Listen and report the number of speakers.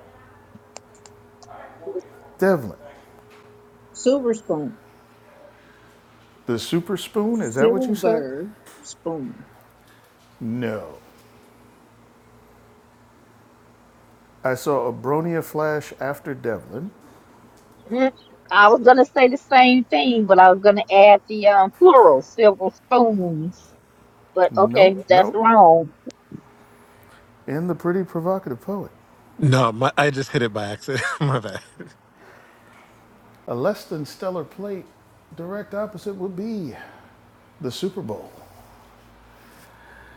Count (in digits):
4